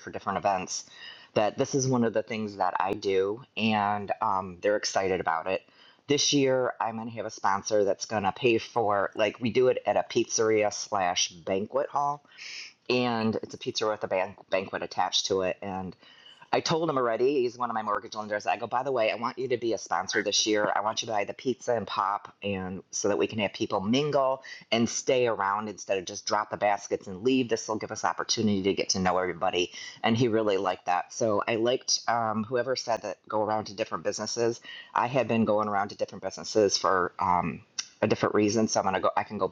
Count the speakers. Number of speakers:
1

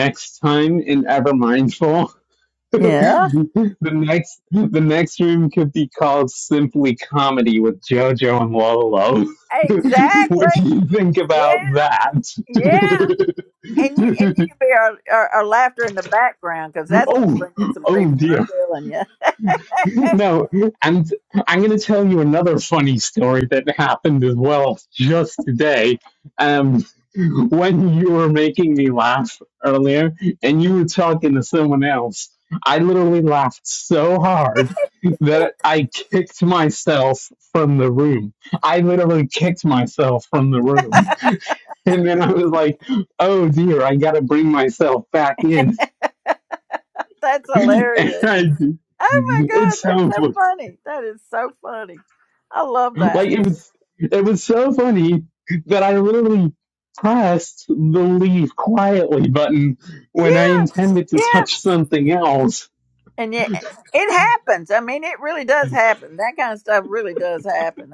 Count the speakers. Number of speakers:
2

